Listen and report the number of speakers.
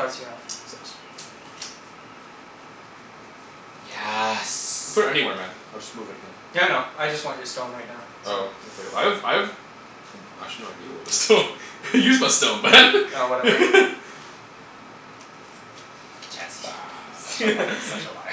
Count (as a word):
three